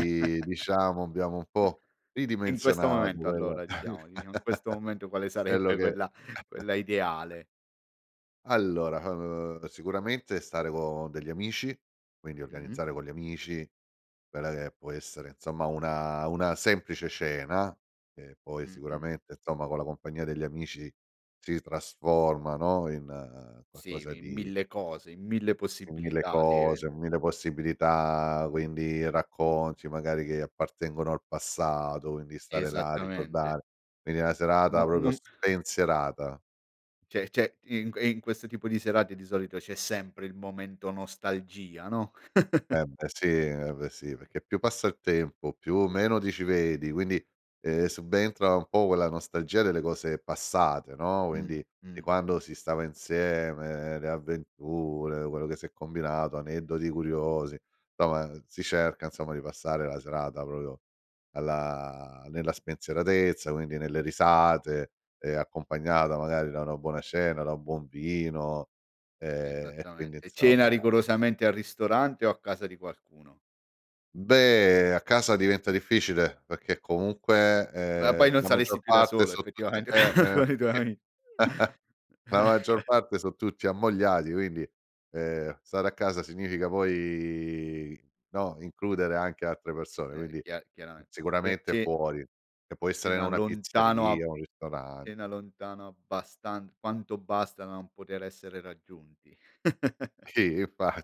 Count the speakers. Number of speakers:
2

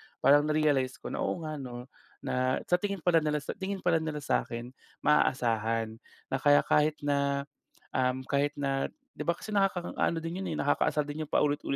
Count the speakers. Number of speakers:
1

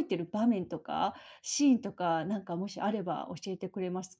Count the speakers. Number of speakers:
1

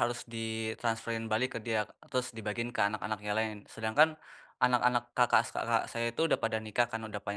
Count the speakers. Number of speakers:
1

